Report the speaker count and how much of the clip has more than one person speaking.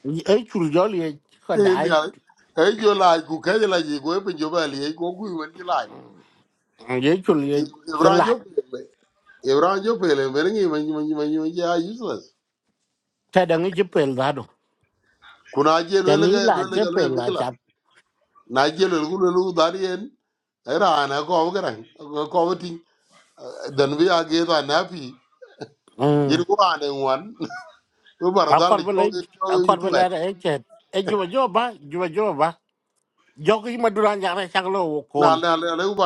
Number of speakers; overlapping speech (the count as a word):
two, about 10%